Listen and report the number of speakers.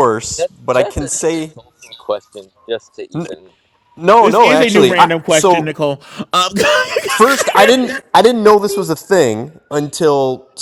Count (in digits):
3